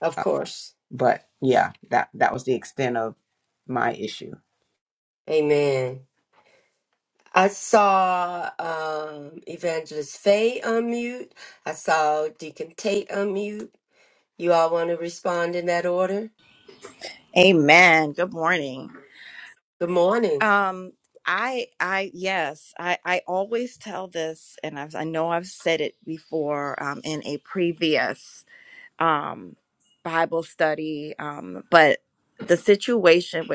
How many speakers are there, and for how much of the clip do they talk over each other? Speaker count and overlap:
3, under 1%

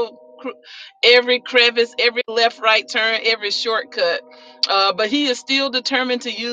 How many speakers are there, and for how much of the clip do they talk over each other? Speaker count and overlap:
1, no overlap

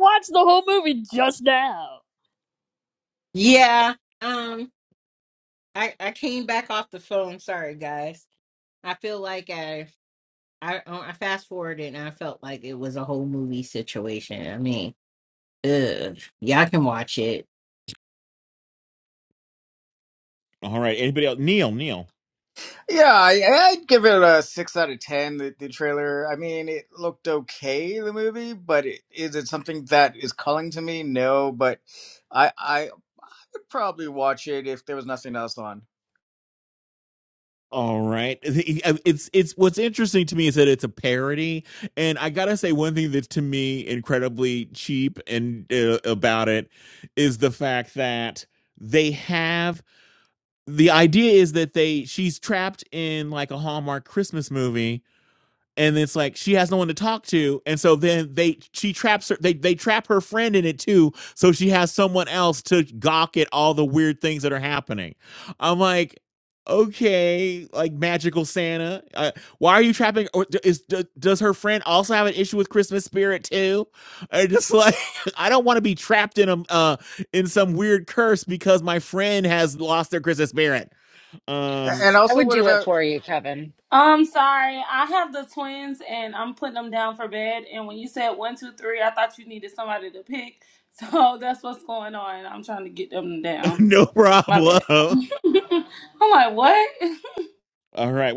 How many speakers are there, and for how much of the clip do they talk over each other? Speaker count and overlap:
6, about 1%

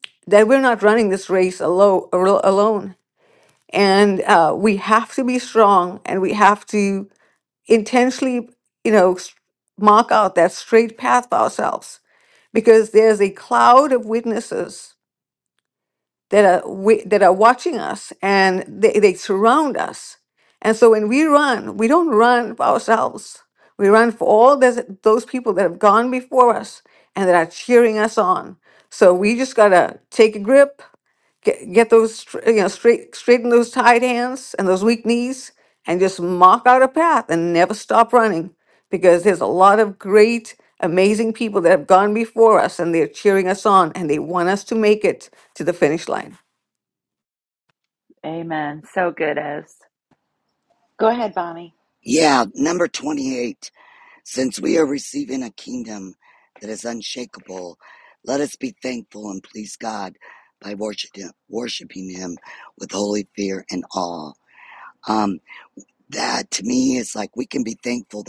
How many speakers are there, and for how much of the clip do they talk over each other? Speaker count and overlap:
3, no overlap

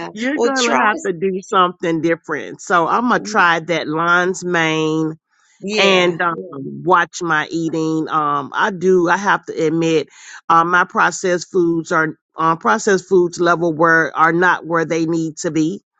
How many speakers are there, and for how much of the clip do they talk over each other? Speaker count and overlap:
2, about 10%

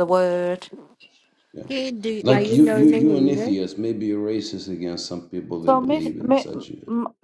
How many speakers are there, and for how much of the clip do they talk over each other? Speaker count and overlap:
3, about 31%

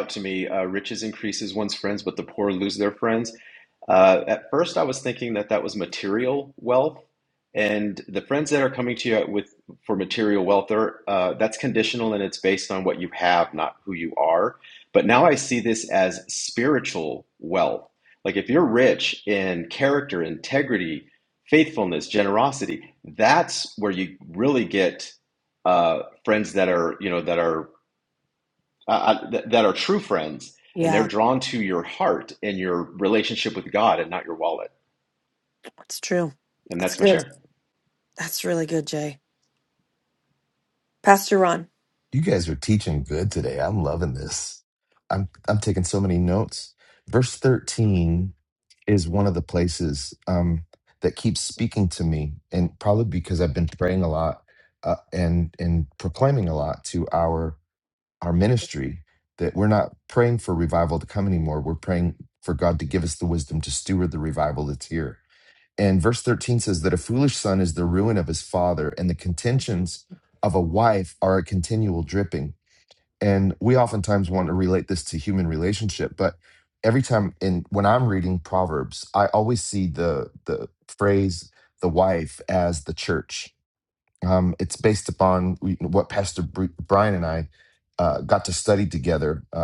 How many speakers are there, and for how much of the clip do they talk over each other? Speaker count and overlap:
3, about 1%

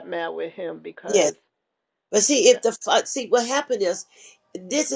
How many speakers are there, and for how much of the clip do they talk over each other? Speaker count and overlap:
2, about 7%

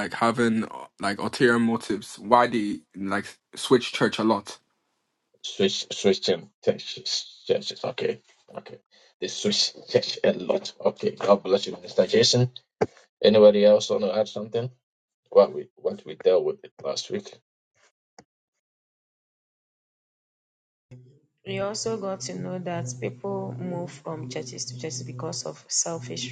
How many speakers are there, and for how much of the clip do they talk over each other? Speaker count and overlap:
3, no overlap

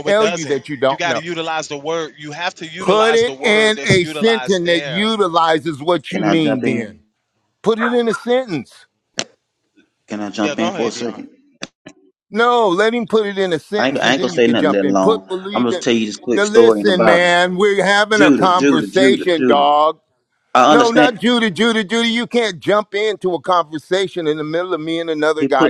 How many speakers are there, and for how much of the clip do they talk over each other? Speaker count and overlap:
3, about 40%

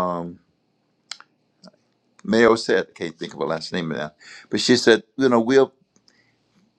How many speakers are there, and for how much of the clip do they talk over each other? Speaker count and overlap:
1, no overlap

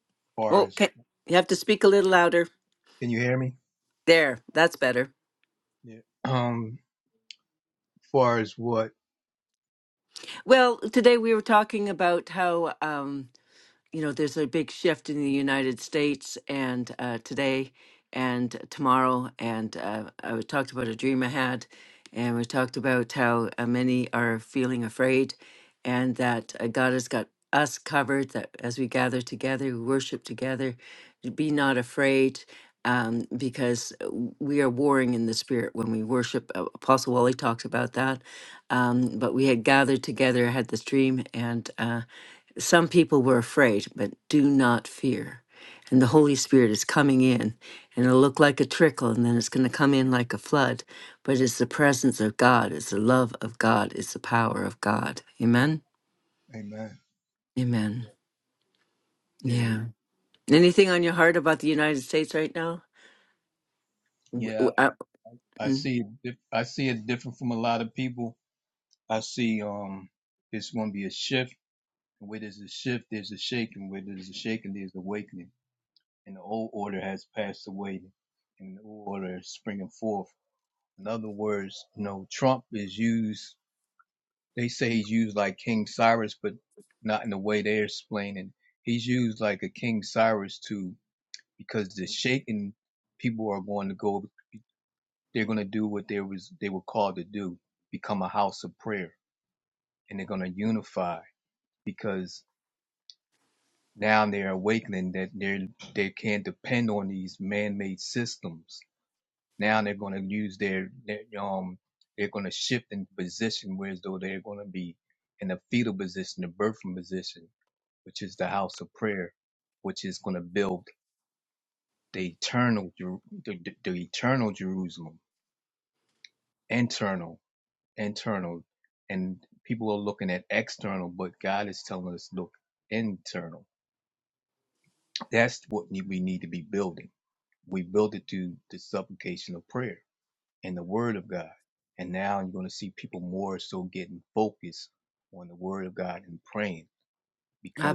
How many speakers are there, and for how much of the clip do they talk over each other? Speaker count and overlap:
2, about 1%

